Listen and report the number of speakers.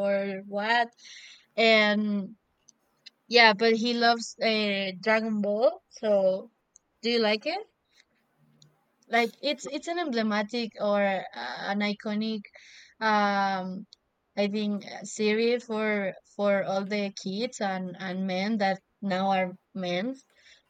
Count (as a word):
one